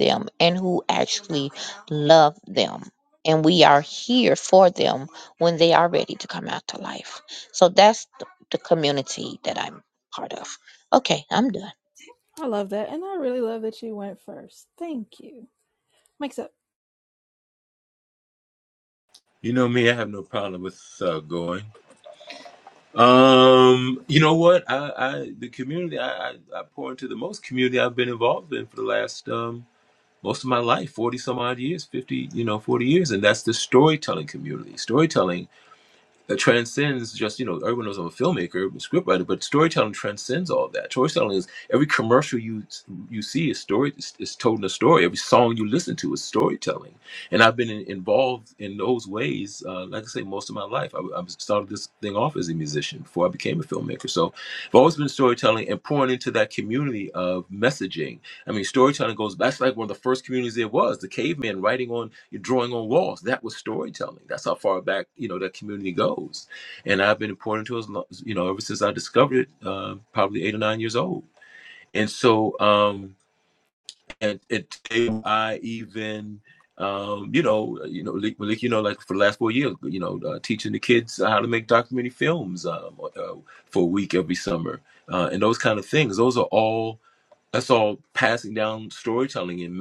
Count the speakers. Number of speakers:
3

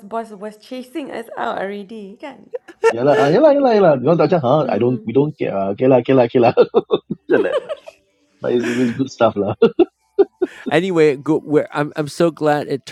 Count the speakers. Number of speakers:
3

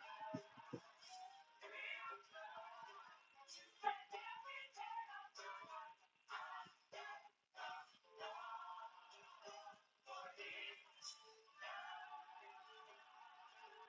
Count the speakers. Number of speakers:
0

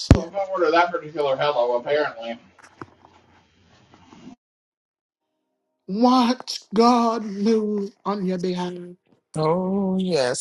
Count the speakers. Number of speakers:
3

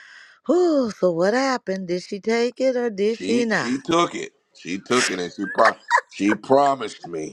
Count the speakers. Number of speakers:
2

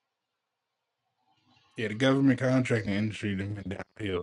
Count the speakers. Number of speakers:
1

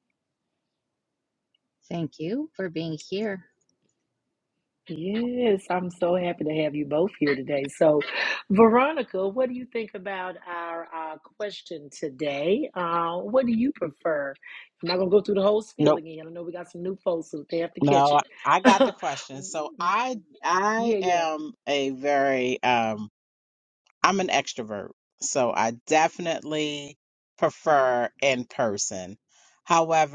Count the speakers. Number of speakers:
3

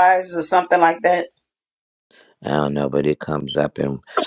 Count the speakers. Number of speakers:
2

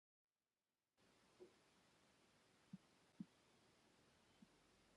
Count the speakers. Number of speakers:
0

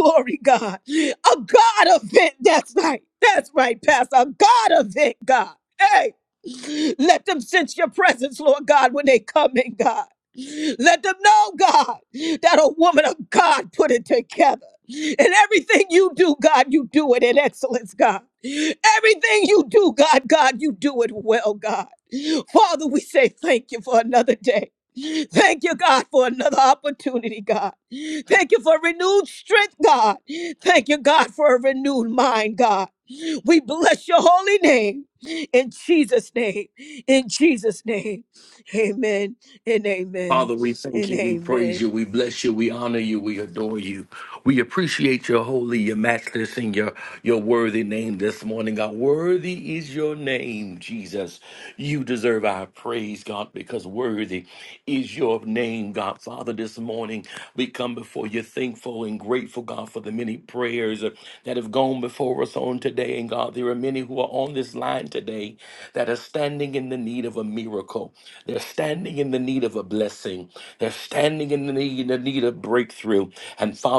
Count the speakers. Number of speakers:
2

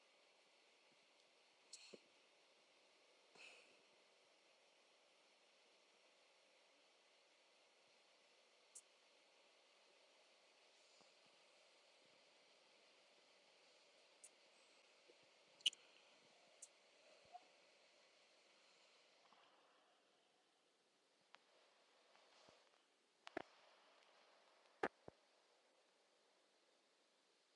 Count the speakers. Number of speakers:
0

